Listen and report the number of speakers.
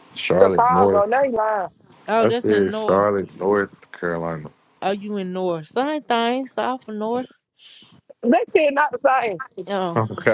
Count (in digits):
3